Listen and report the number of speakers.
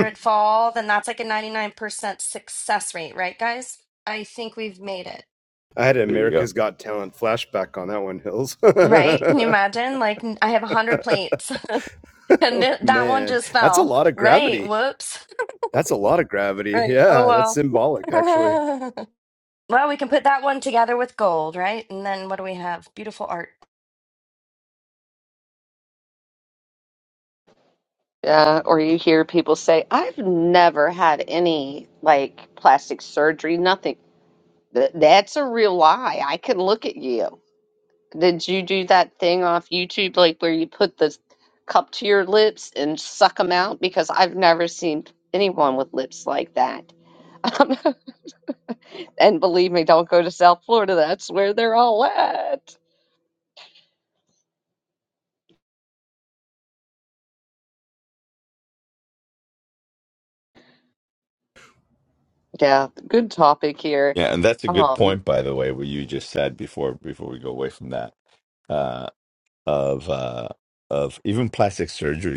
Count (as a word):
four